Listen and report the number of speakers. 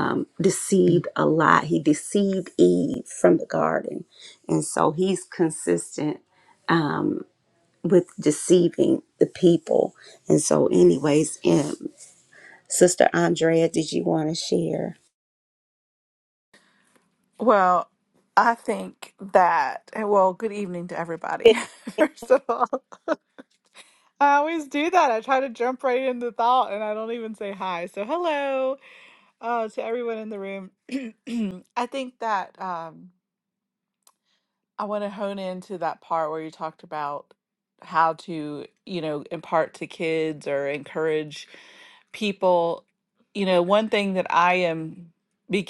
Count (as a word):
two